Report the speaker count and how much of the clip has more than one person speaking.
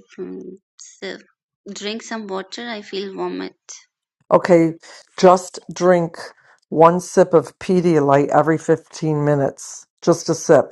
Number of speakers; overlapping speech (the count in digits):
2, no overlap